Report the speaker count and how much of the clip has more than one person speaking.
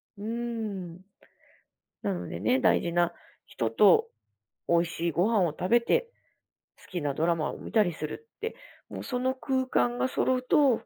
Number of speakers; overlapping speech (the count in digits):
1, no overlap